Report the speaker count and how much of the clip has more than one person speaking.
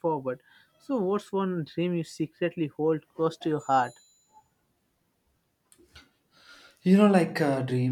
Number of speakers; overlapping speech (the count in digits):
2, no overlap